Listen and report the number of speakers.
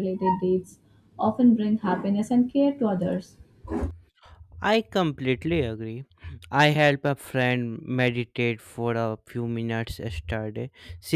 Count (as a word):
two